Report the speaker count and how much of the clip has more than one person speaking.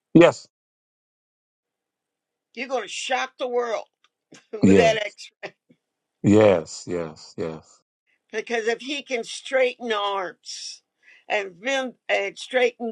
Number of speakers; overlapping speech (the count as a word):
two, about 3%